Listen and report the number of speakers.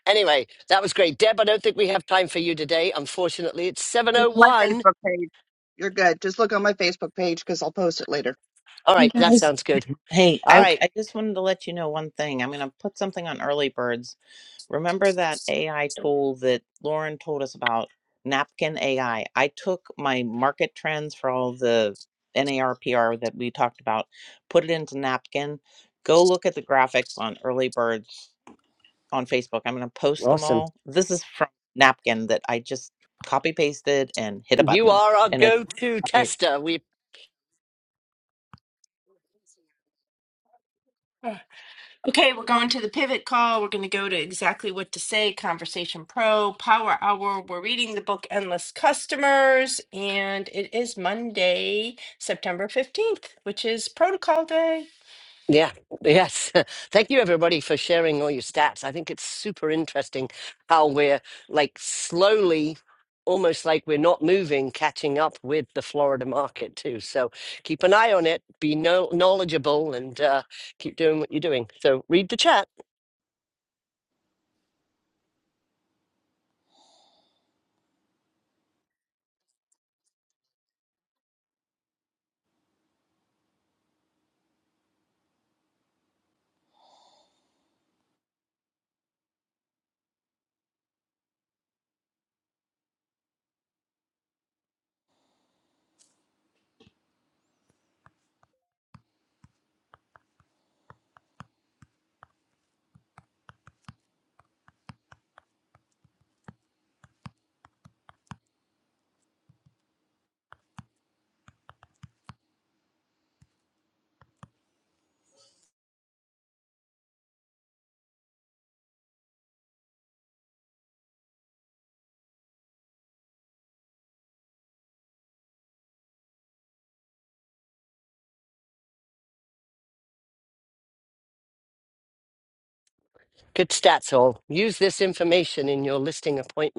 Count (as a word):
four